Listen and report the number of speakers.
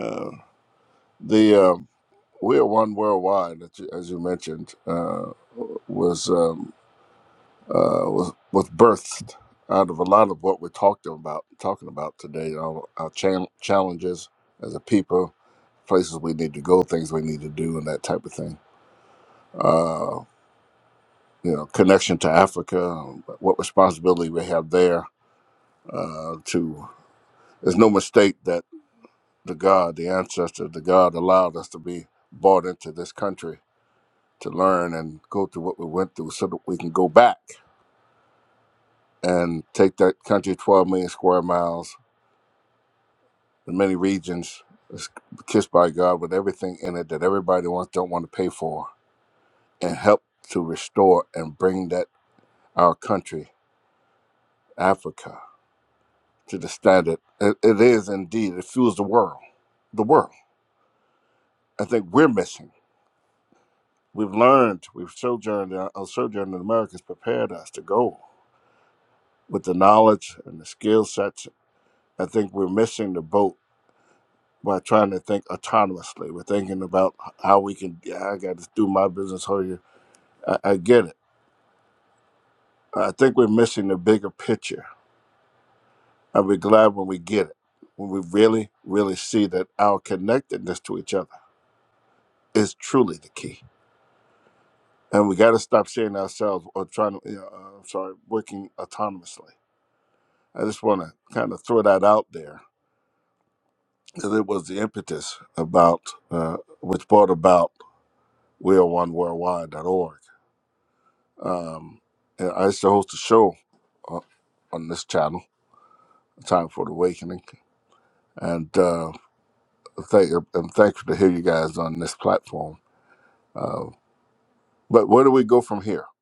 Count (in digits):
1